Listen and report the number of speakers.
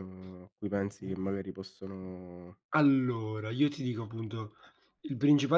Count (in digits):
2